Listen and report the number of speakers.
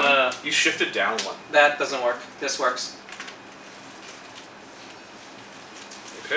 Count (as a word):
two